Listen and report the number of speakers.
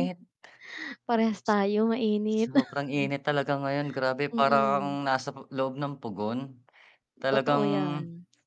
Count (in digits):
2